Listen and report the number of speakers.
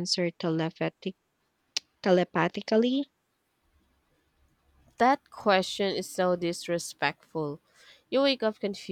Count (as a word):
two